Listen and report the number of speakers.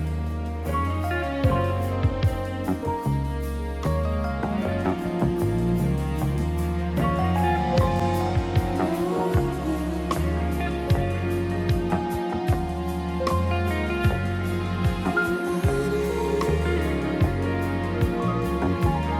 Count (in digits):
0